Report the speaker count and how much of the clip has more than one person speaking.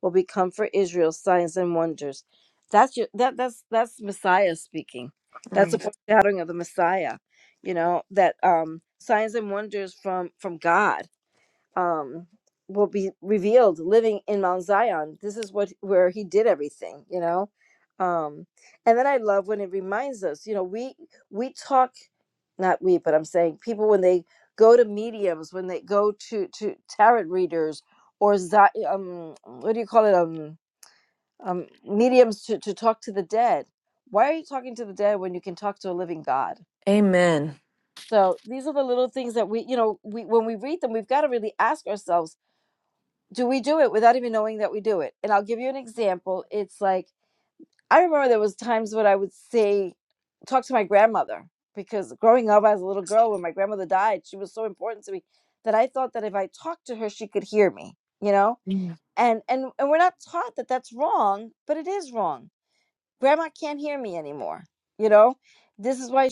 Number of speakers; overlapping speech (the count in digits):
2, under 1%